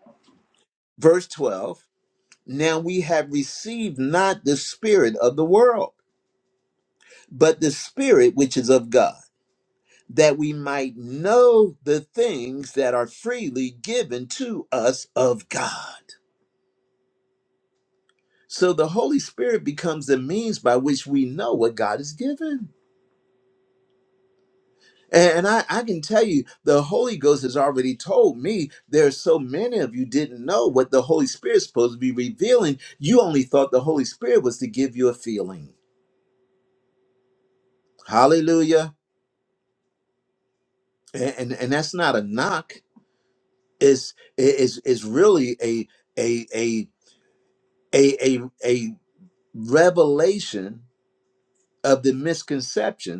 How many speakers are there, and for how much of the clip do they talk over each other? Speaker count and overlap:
one, no overlap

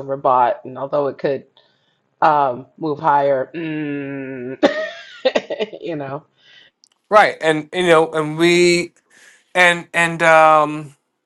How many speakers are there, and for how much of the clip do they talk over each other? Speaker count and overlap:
two, no overlap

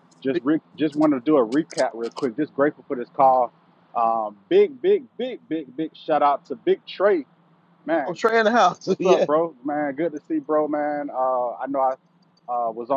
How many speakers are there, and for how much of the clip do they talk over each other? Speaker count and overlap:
two, about 4%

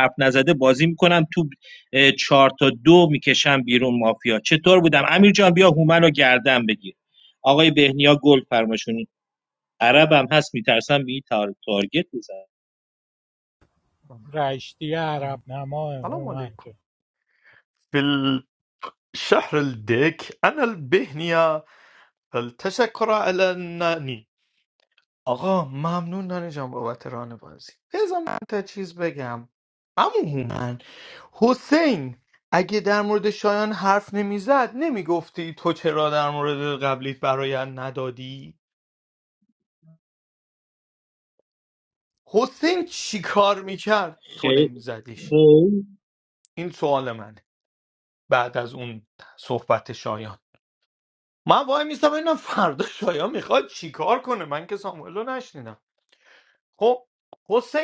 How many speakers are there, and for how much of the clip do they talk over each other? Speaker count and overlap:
three, about 2%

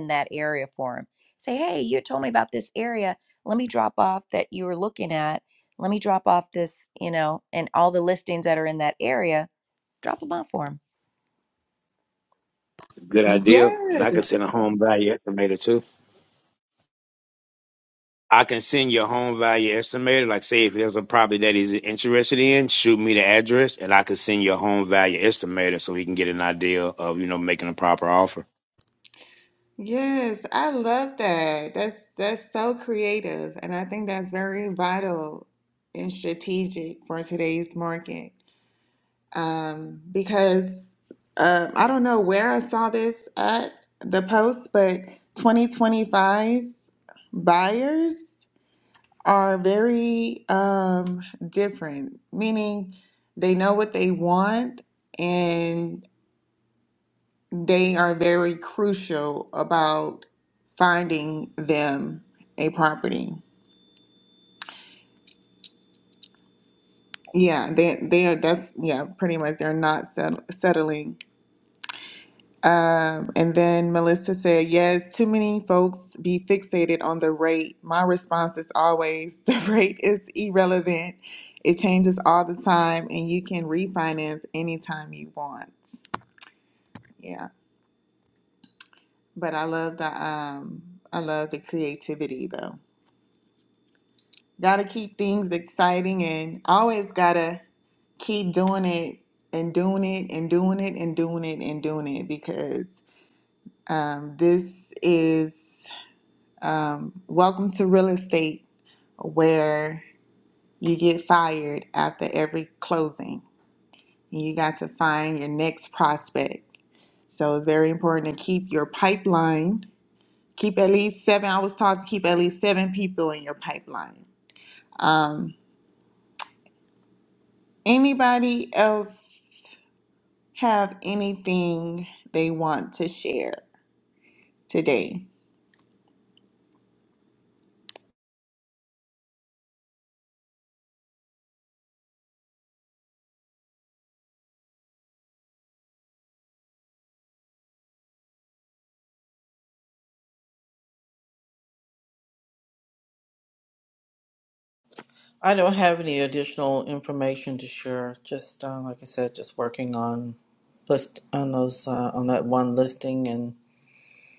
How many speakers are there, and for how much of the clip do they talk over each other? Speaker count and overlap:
four, about 1%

